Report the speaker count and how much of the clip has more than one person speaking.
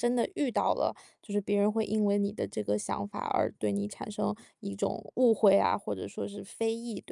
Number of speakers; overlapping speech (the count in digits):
1, no overlap